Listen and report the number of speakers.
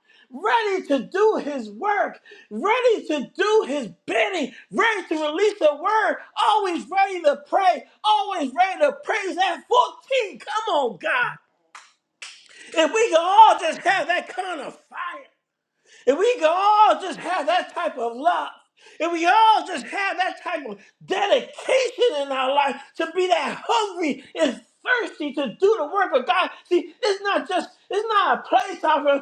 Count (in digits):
1